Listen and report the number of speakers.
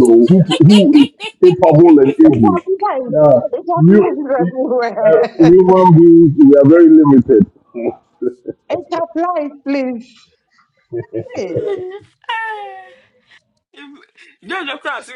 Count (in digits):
3